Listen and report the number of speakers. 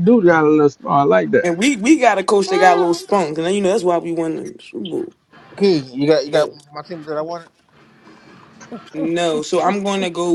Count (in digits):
3